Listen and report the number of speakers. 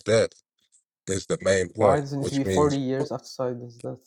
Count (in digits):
2